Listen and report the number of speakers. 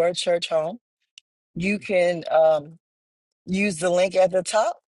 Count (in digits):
1